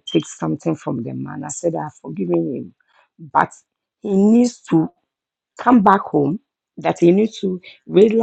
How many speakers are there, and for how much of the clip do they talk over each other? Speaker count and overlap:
1, no overlap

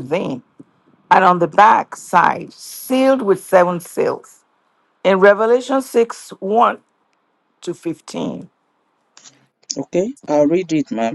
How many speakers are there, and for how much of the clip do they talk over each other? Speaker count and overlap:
2, no overlap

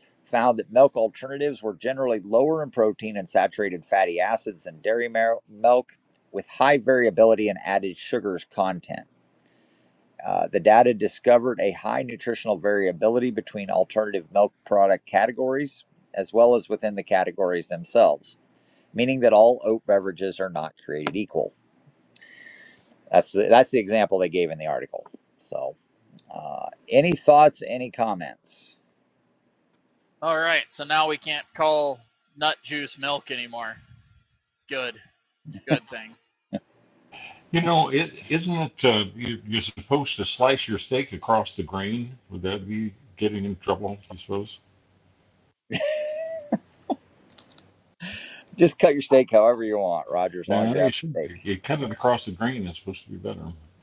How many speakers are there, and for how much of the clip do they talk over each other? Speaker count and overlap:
3, about 2%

